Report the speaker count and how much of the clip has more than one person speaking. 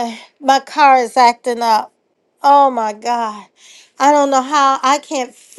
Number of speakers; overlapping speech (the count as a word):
one, no overlap